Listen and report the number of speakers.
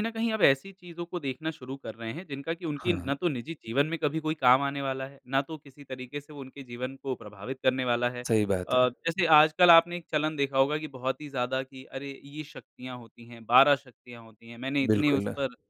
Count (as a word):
two